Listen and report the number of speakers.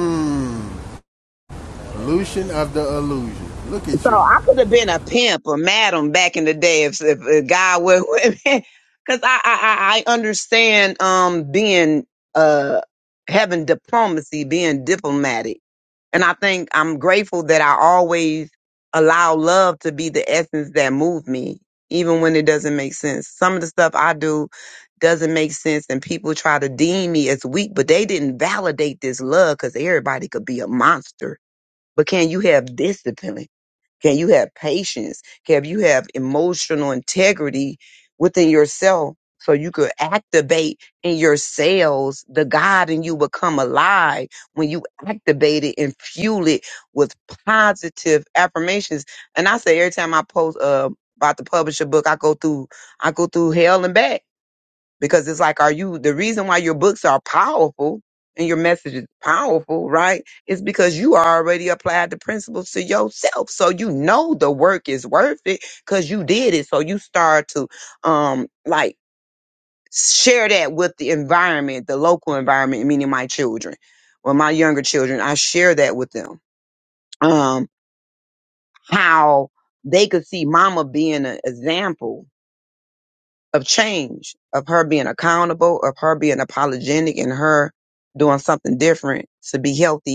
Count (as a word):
two